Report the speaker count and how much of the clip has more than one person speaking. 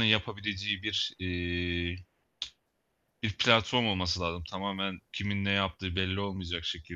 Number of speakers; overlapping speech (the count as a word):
one, no overlap